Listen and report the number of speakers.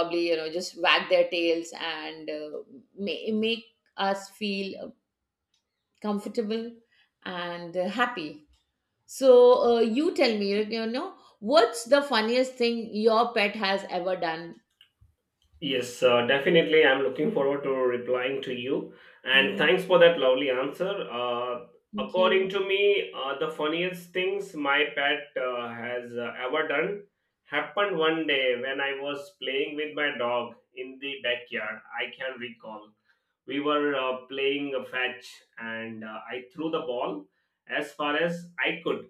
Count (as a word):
two